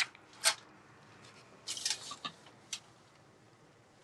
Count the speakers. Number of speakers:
zero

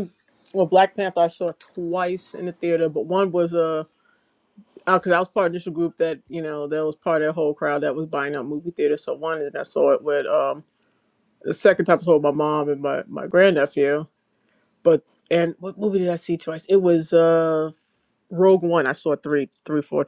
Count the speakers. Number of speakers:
one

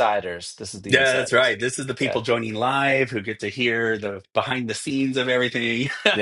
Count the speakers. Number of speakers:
two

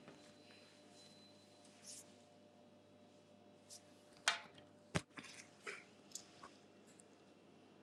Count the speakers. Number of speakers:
zero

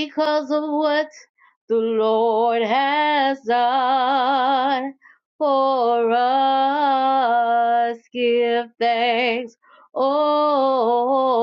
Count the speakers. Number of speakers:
one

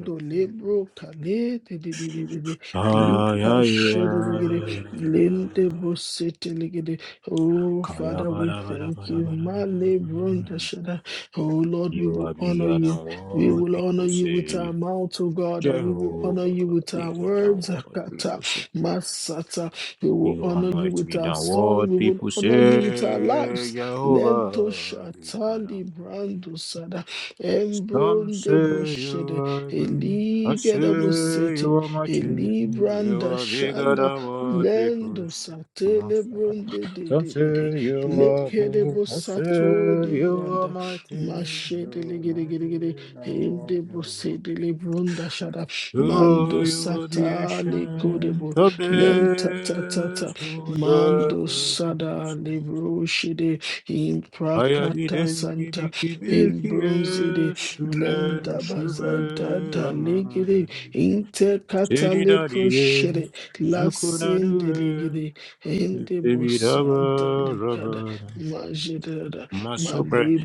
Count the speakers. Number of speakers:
two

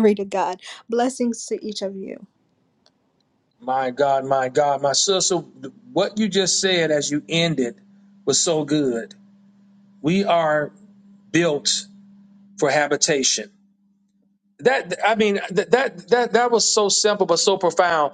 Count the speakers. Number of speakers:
two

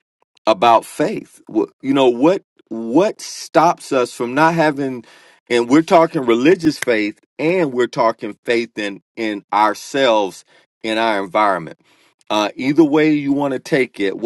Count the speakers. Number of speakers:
one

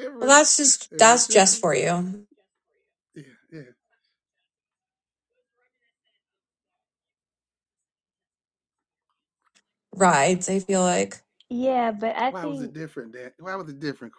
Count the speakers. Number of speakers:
three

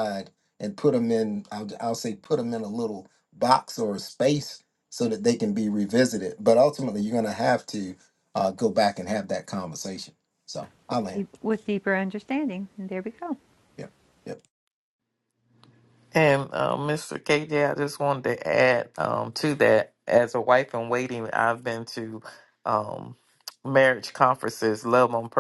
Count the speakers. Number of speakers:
three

